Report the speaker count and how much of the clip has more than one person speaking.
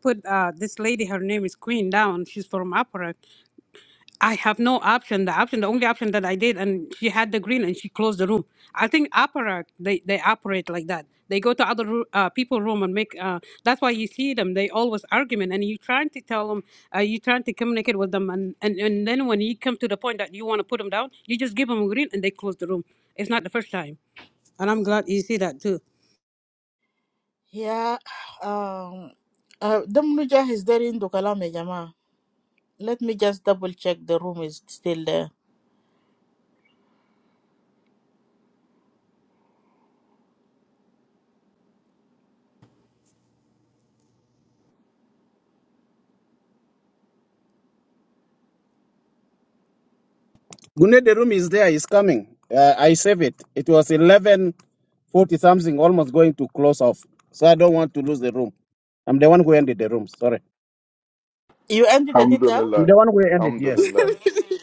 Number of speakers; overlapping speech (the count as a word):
four, about 1%